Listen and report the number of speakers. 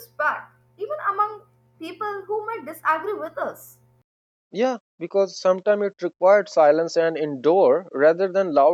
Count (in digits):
2